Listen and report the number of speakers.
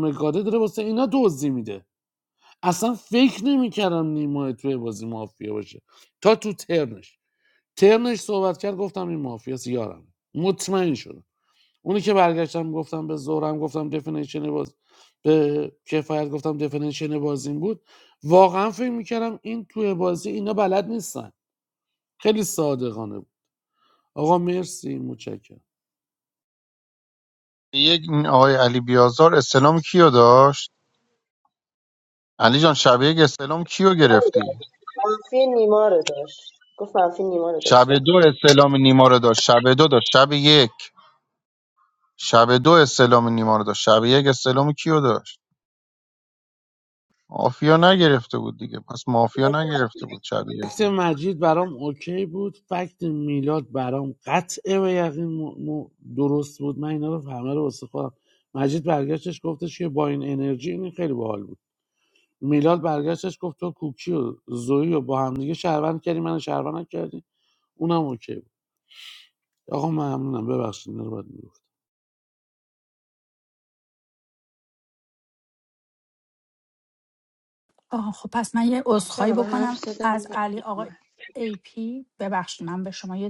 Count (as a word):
four